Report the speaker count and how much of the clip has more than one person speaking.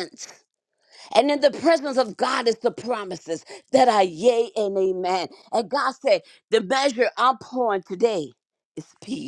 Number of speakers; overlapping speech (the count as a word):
one, no overlap